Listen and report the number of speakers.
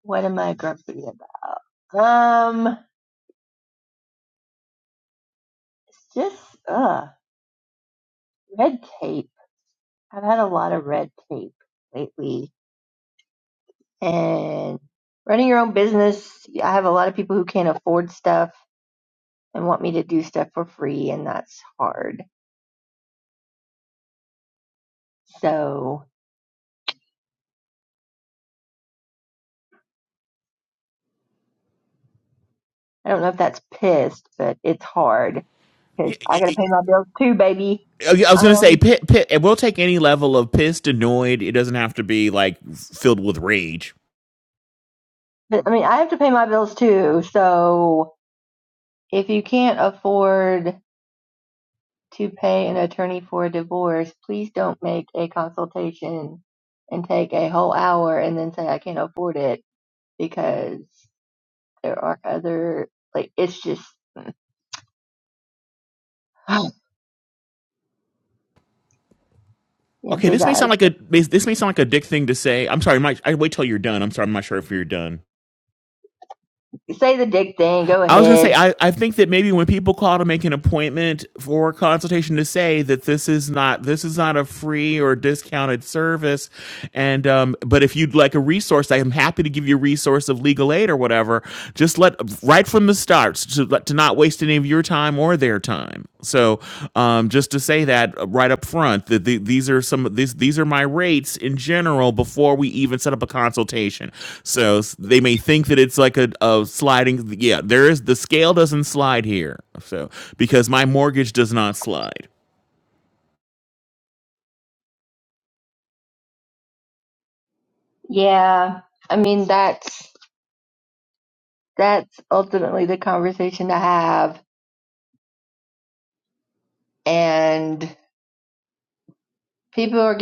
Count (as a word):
two